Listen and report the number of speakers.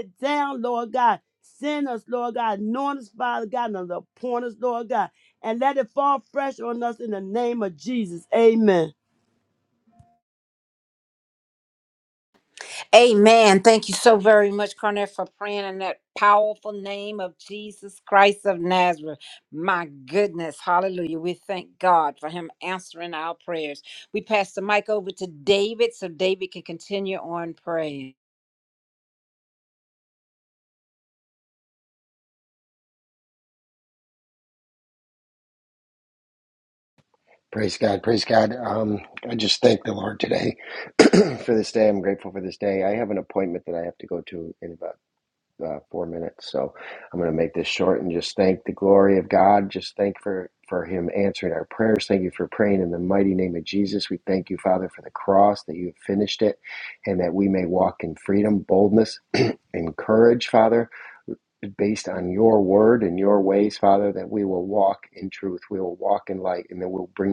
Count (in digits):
3